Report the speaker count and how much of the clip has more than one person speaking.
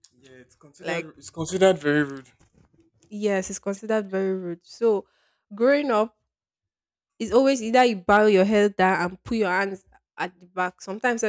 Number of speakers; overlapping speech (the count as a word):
two, about 2%